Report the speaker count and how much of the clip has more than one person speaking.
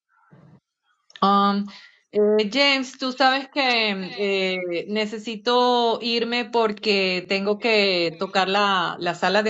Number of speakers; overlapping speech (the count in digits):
1, no overlap